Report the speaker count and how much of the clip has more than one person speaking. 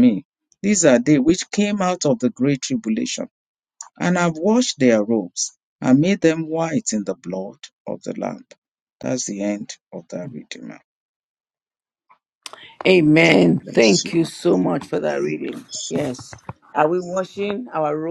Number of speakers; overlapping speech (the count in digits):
2, about 5%